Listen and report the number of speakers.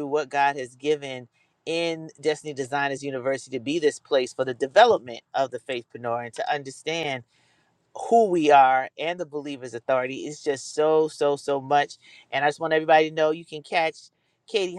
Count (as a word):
one